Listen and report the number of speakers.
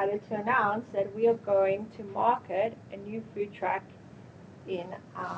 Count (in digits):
1